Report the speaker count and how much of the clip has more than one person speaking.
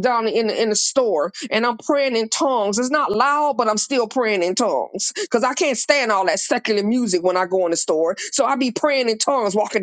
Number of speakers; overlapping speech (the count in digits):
1, no overlap